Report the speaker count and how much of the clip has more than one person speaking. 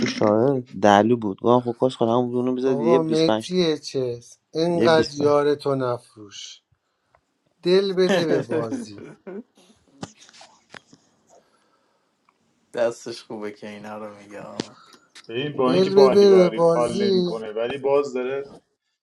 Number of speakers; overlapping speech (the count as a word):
four, about 17%